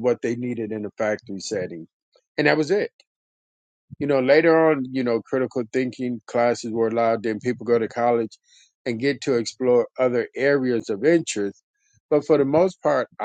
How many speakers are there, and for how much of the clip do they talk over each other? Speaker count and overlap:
1, no overlap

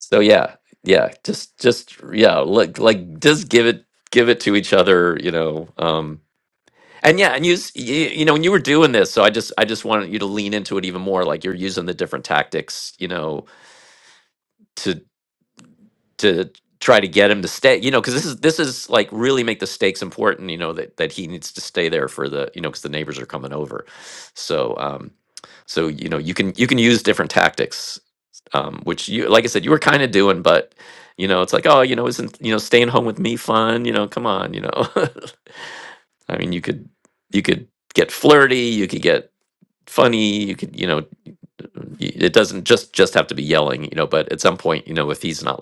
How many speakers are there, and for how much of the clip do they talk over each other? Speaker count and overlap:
1, no overlap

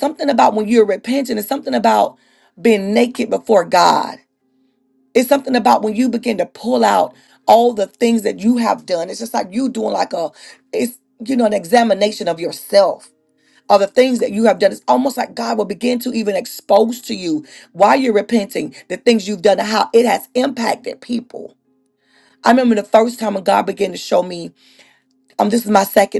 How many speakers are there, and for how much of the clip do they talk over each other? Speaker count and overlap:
1, no overlap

